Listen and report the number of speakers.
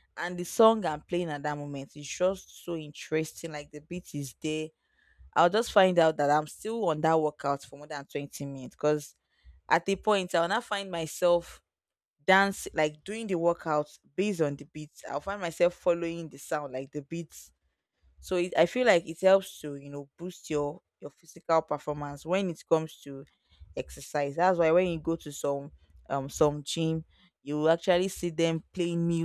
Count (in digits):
1